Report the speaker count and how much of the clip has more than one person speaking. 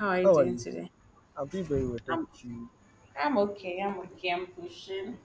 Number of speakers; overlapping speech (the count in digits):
2, about 11%